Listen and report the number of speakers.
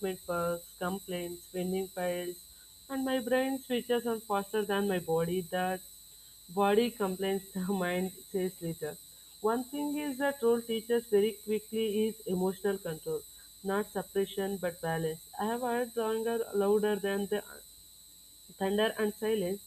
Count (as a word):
one